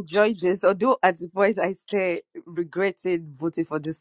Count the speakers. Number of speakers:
1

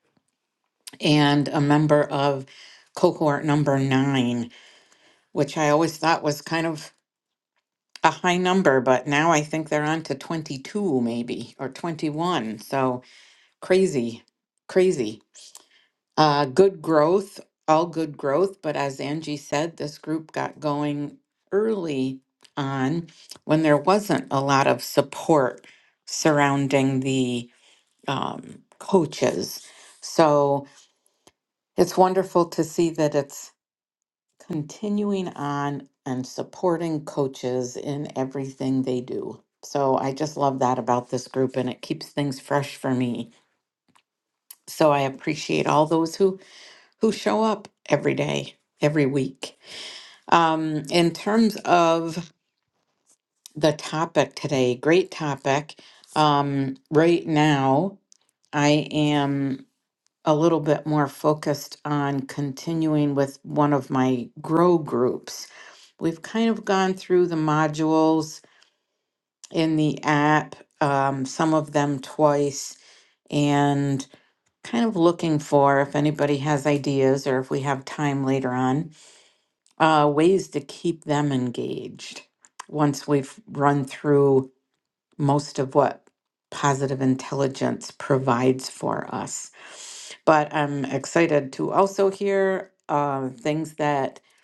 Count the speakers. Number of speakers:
1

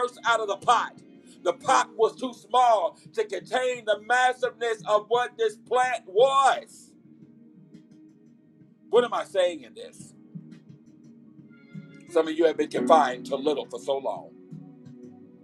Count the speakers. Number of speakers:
1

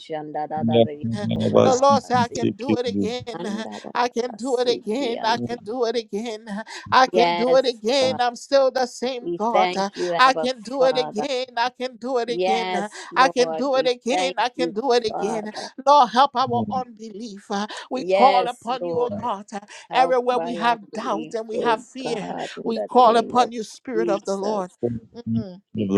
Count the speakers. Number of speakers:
3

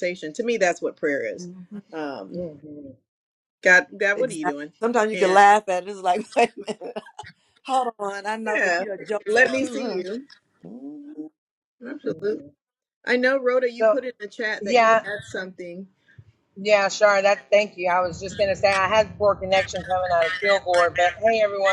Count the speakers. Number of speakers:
3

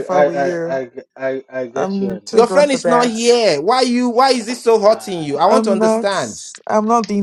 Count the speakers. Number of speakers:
3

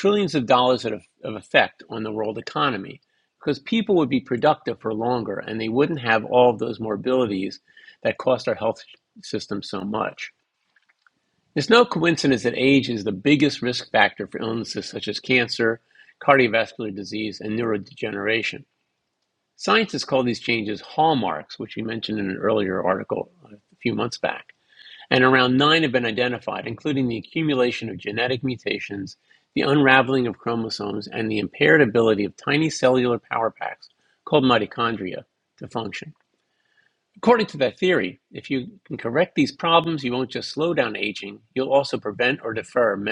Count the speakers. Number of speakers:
1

